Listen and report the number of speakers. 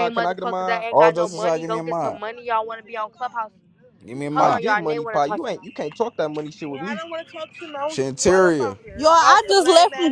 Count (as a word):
four